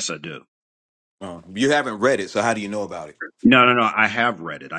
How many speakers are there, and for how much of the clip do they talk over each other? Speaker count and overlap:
2, no overlap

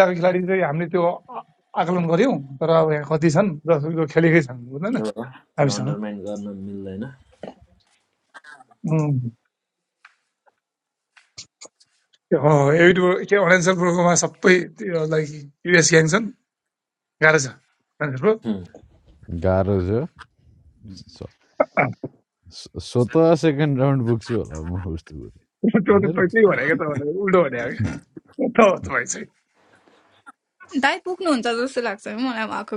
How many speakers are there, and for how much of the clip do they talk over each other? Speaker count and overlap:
4, about 2%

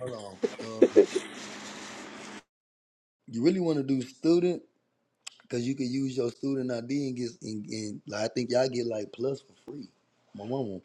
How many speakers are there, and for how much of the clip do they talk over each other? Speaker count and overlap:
1, no overlap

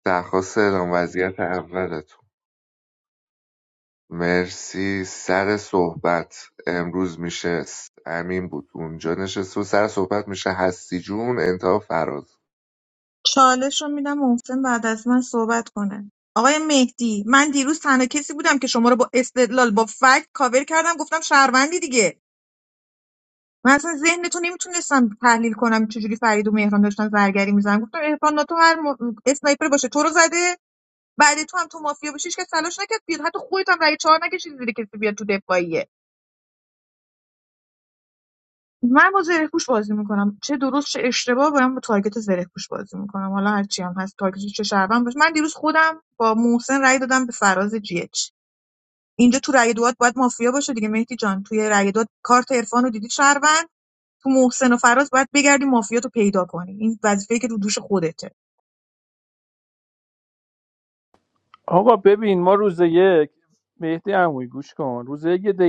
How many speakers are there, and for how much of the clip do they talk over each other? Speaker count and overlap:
3, no overlap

